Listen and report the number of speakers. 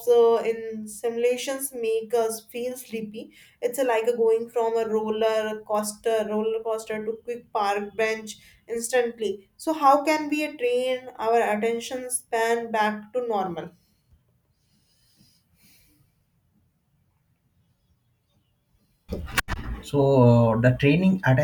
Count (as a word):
two